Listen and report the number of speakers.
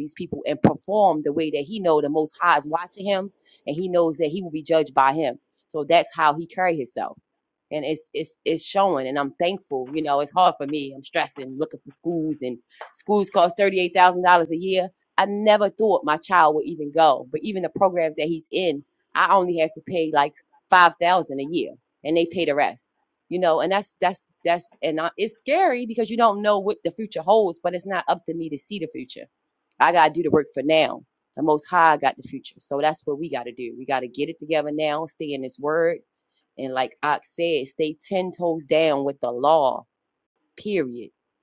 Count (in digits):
1